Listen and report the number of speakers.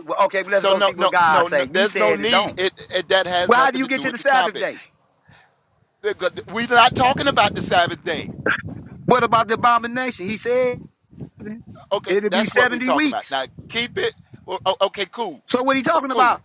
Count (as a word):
two